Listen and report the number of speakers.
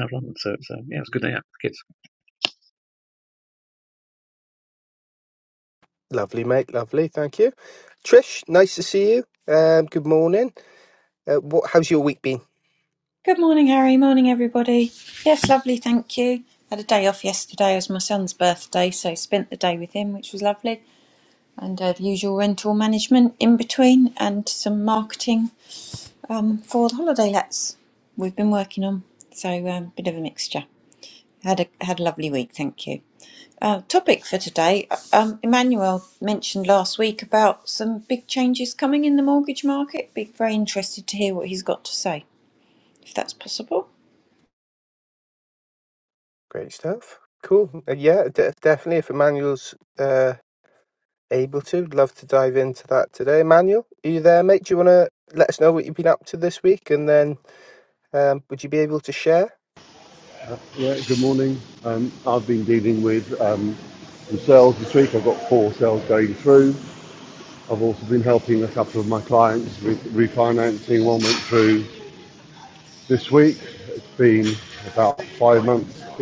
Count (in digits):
4